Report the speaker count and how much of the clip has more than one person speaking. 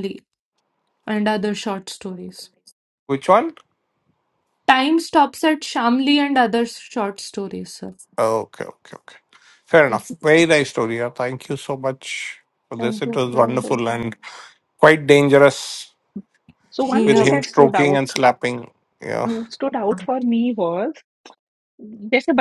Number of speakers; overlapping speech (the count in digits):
3, about 11%